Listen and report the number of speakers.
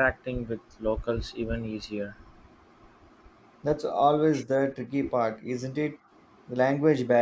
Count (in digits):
2